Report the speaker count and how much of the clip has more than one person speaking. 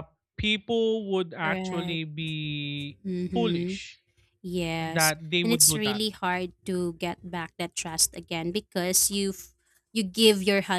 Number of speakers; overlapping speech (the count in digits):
2, about 18%